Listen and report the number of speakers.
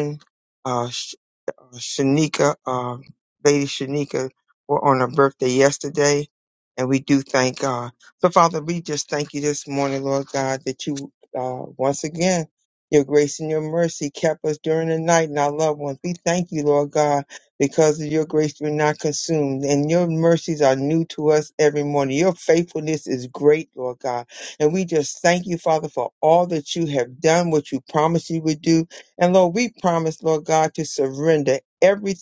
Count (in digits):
1